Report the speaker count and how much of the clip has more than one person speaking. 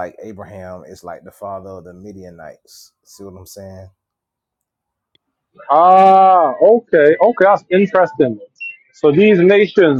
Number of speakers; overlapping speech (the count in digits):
2, no overlap